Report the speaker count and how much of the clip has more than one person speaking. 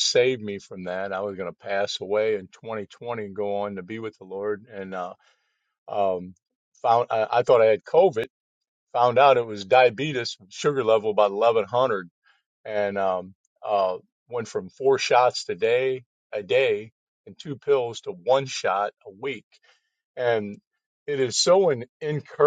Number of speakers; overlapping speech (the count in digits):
1, no overlap